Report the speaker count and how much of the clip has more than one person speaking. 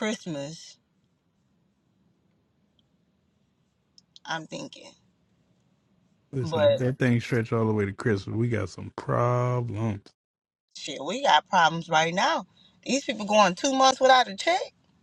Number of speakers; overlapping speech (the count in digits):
2, about 3%